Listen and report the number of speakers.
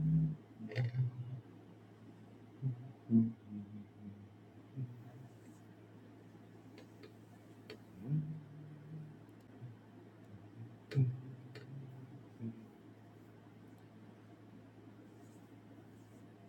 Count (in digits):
0